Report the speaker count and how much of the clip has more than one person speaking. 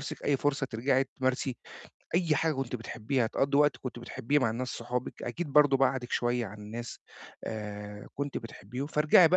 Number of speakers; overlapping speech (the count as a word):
one, no overlap